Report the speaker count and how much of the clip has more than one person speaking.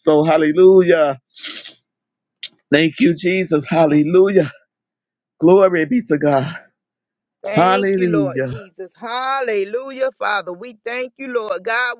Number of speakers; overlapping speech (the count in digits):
2, about 8%